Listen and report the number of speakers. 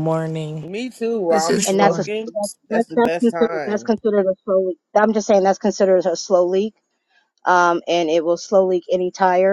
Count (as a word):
three